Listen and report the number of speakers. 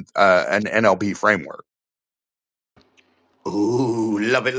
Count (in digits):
2